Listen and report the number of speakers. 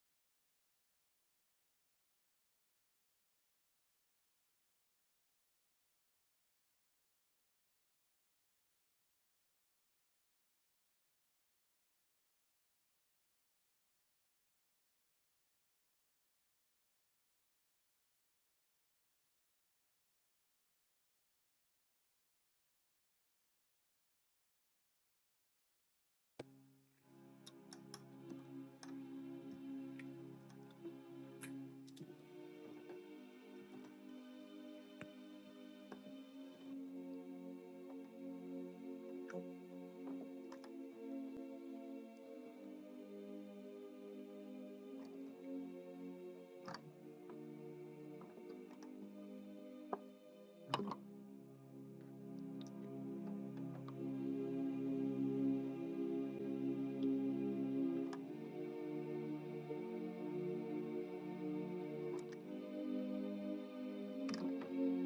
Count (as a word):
zero